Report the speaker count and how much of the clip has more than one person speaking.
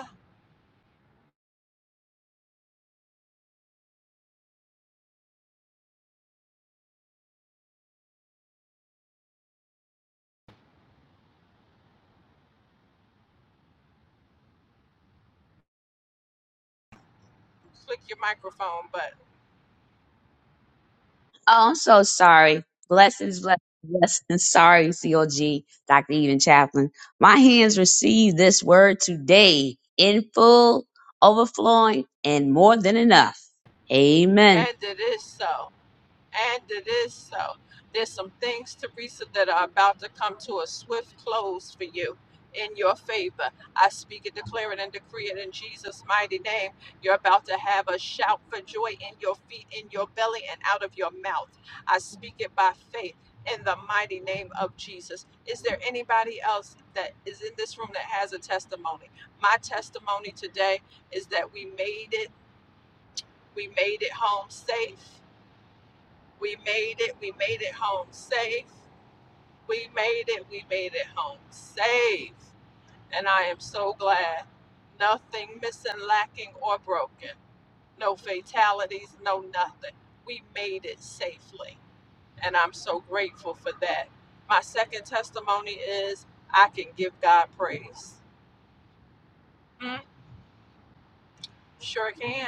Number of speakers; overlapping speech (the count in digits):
2, under 1%